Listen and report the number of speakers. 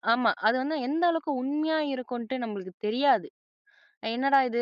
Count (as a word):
one